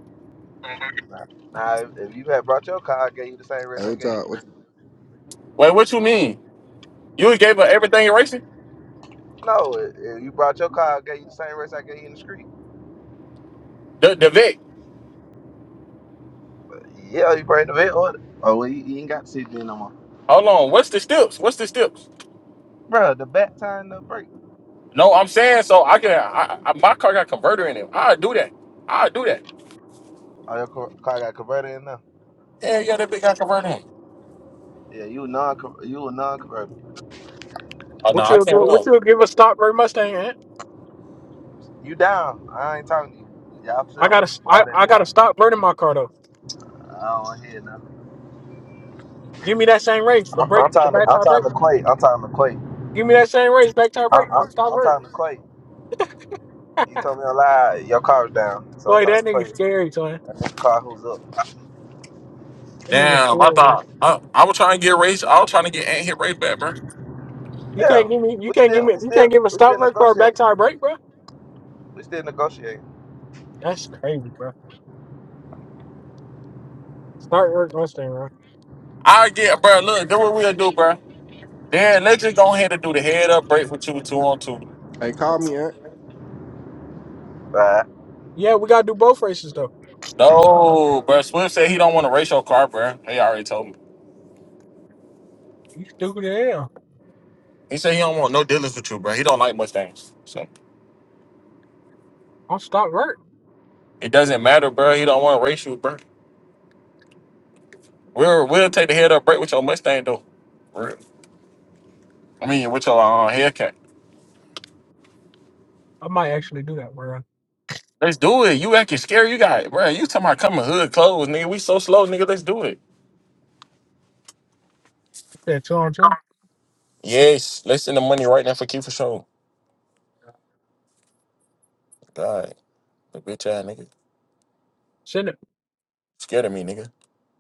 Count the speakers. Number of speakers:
four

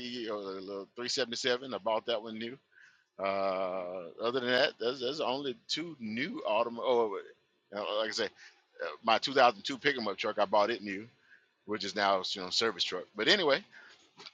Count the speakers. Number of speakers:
one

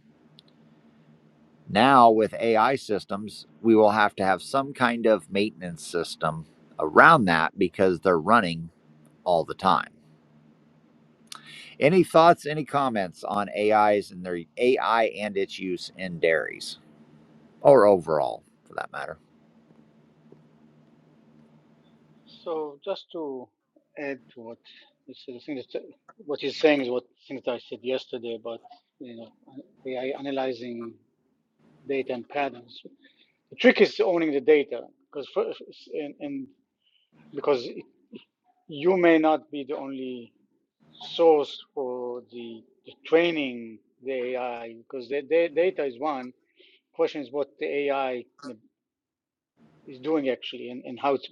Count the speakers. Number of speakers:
two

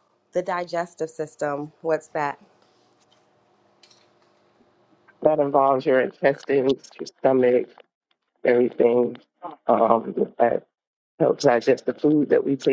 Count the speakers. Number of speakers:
two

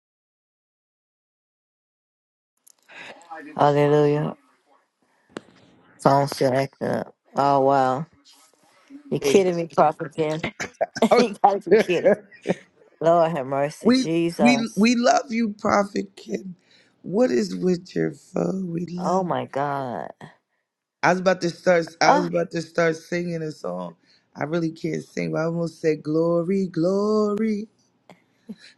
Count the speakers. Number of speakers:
two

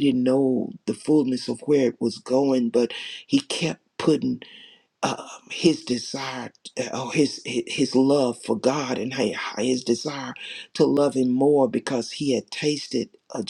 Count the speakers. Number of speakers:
one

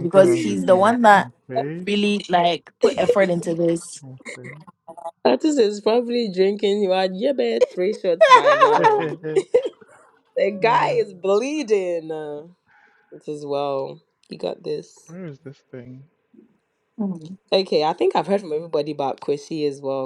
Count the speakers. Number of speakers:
three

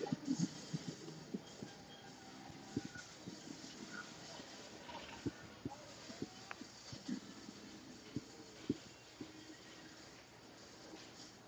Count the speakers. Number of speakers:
zero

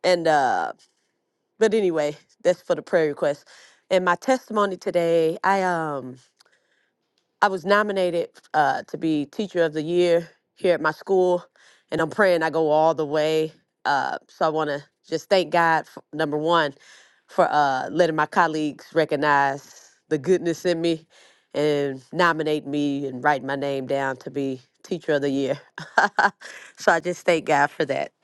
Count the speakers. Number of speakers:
one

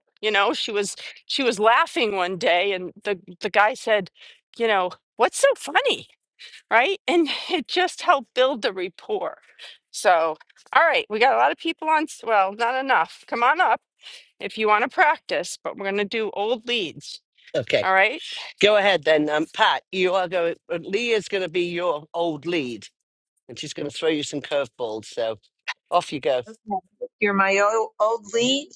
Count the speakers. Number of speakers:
three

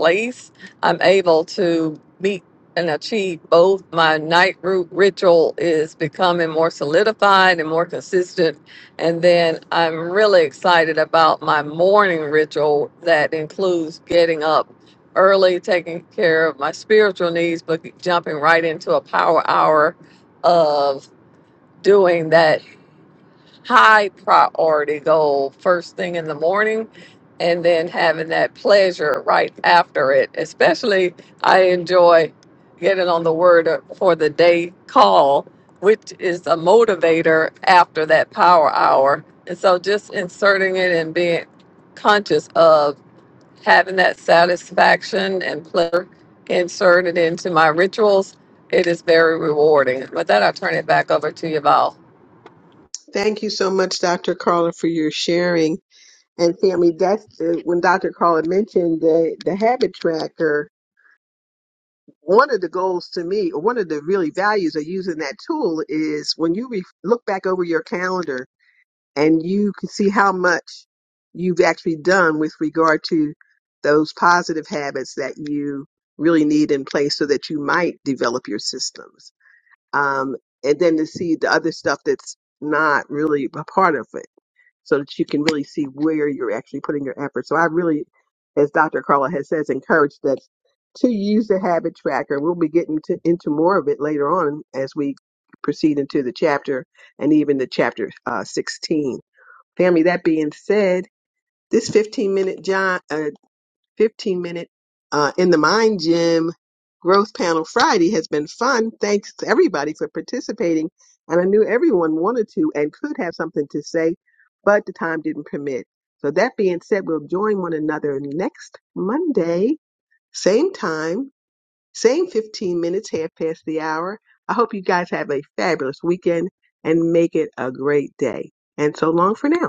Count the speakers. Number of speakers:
two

